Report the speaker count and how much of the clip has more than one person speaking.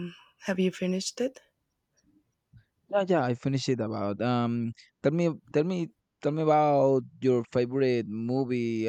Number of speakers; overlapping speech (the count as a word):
two, no overlap